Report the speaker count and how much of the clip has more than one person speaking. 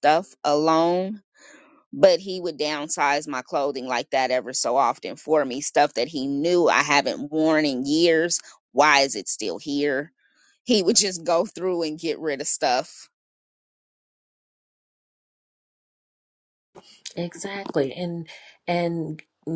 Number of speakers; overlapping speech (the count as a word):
two, no overlap